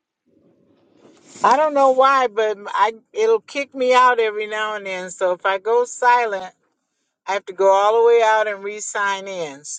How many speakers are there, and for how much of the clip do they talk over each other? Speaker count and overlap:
1, no overlap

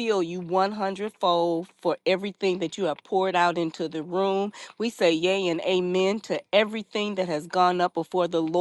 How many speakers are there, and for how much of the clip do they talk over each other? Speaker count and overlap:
1, no overlap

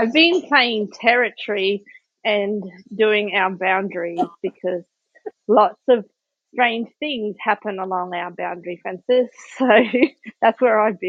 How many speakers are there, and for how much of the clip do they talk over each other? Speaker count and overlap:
1, no overlap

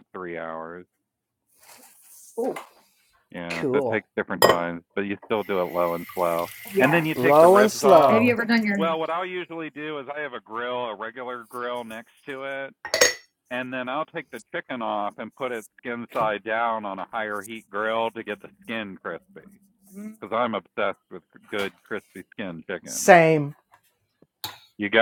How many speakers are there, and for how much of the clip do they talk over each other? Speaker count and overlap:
3, about 9%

